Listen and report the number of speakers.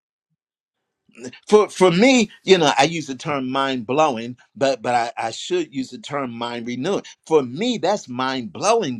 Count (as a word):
one